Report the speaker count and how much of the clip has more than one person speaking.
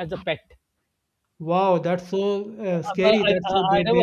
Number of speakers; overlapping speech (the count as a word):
two, about 33%